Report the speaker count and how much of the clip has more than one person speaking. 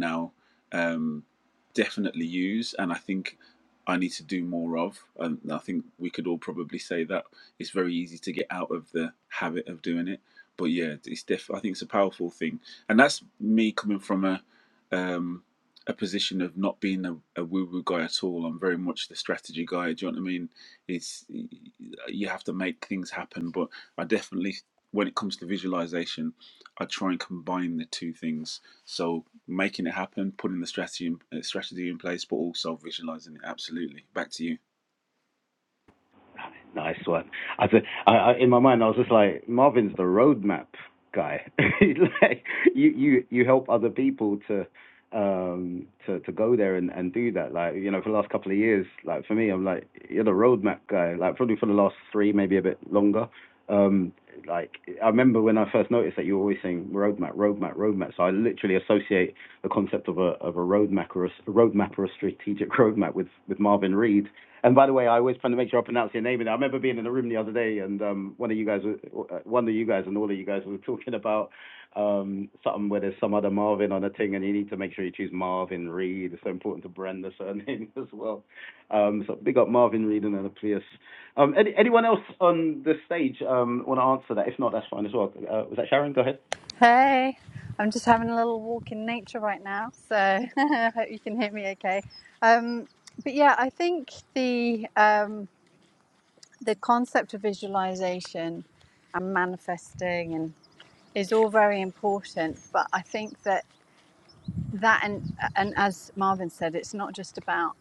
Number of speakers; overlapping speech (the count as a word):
three, no overlap